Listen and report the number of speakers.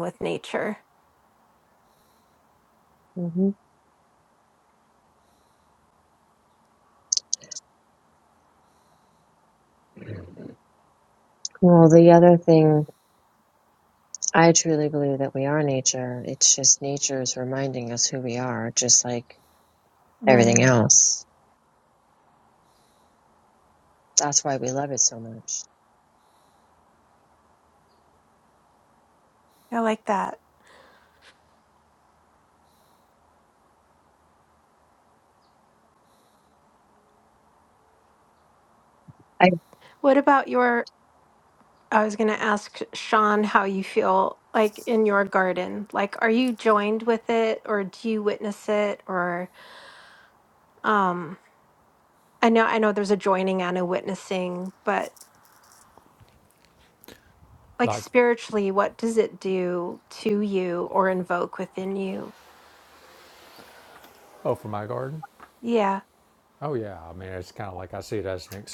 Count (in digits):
3